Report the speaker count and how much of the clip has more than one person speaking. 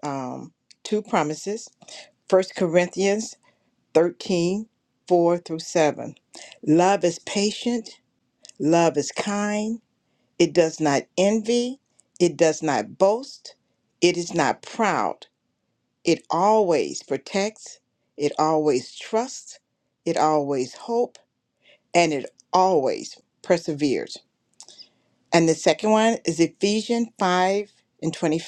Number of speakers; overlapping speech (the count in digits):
1, no overlap